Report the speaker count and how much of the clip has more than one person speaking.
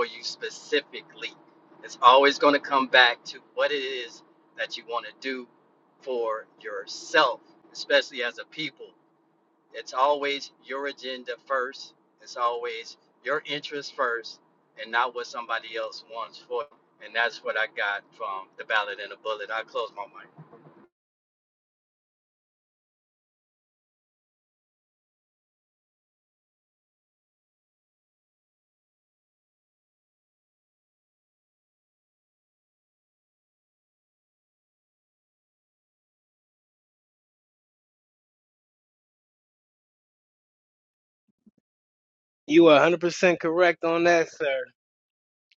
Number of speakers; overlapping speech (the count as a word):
two, no overlap